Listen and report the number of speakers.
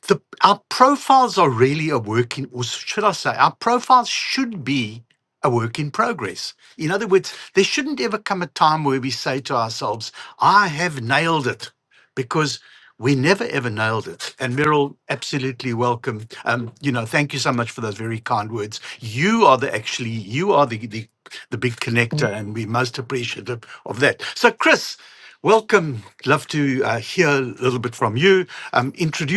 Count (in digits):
1